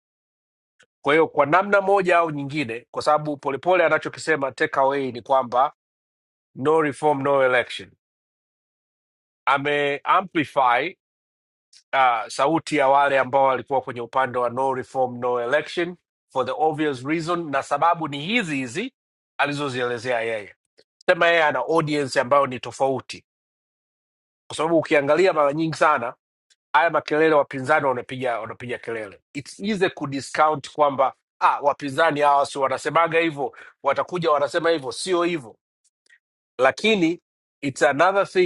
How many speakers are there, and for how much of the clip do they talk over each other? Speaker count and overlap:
1, no overlap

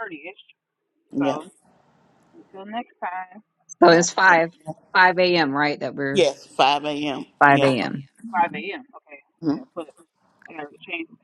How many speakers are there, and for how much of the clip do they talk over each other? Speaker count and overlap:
3, about 12%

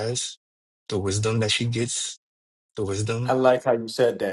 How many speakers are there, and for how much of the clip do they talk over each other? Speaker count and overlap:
2, about 1%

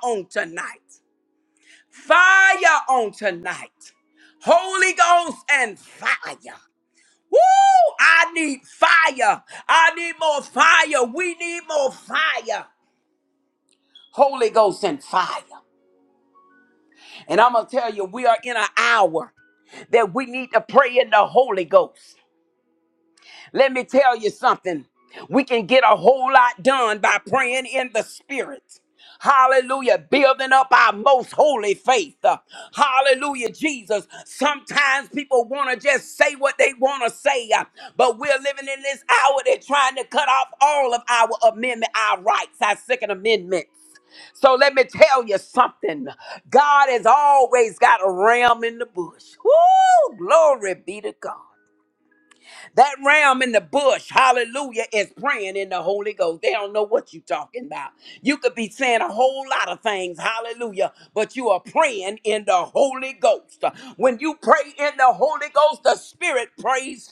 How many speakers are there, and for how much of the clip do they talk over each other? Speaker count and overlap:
1, no overlap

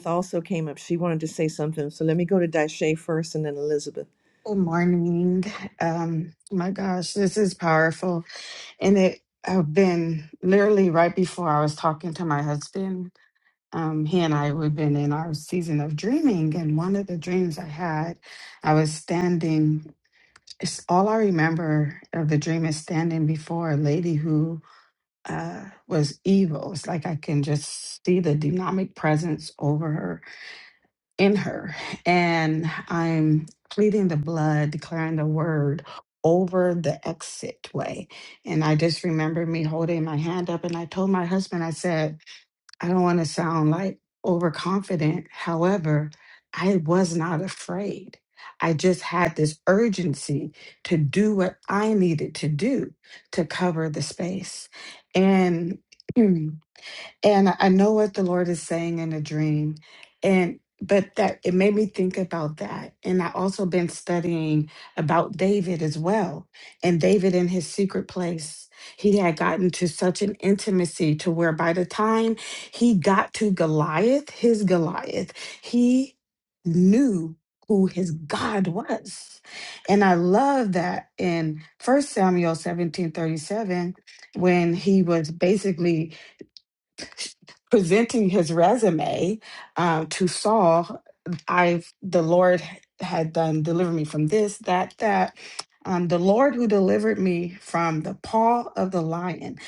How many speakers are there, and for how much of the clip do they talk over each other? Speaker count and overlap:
2, no overlap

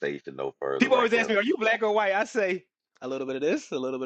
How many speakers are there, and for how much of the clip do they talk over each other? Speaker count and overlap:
2, about 13%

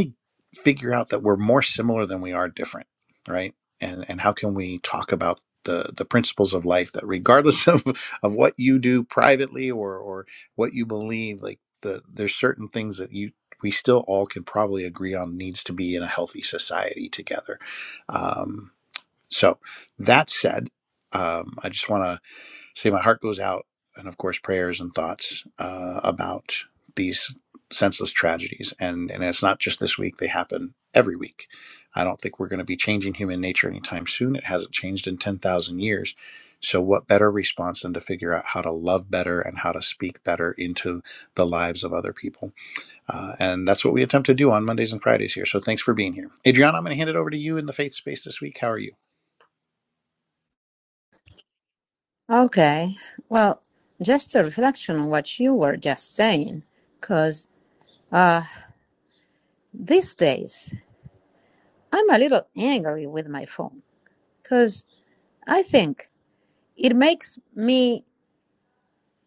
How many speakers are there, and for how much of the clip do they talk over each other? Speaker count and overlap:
2, no overlap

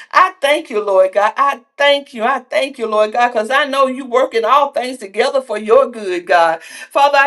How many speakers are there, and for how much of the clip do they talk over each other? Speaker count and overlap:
1, no overlap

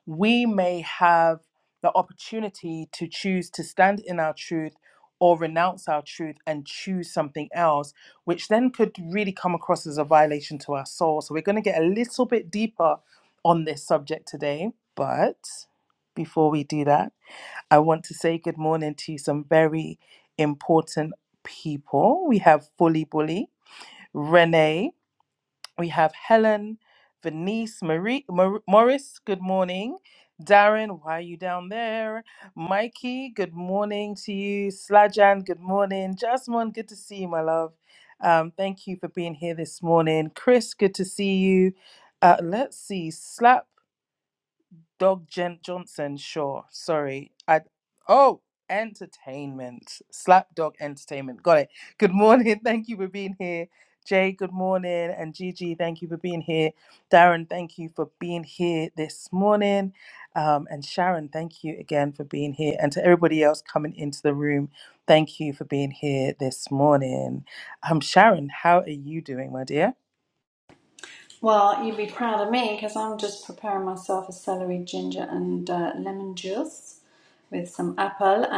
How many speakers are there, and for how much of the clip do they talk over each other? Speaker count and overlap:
2, no overlap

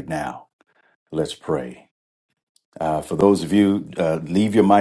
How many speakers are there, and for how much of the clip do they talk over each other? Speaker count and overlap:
1, no overlap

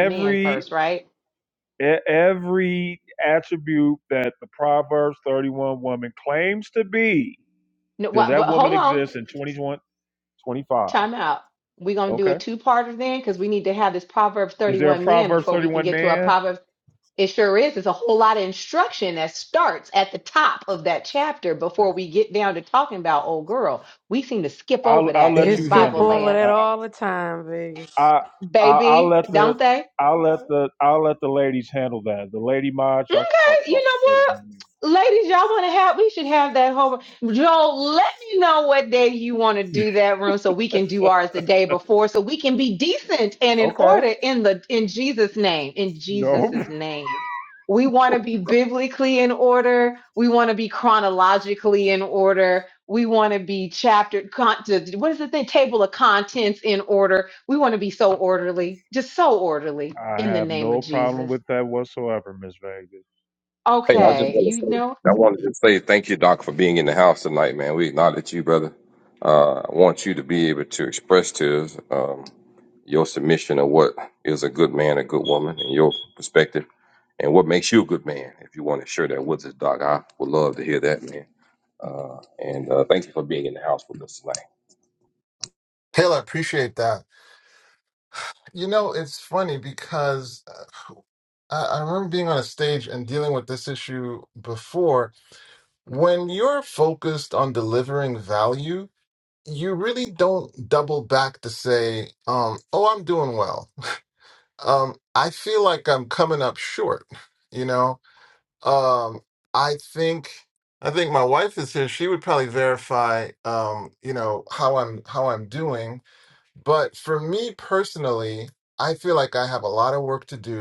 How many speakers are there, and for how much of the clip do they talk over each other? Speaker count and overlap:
5, about 9%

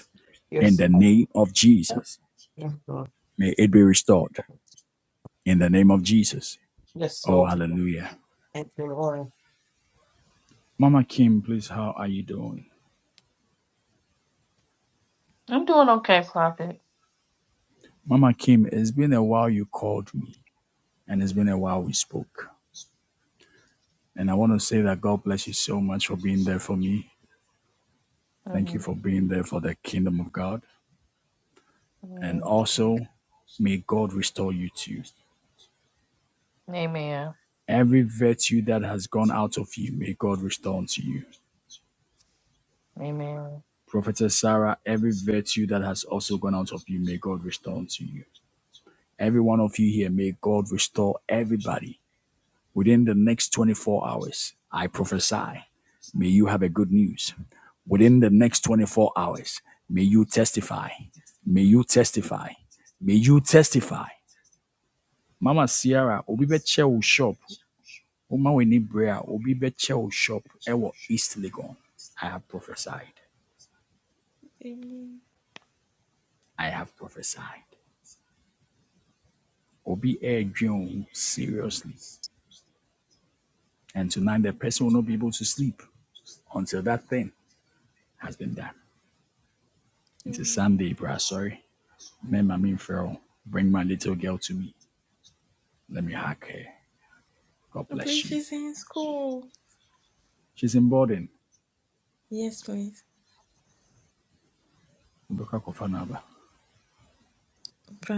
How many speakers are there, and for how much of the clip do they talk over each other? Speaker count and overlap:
4, about 2%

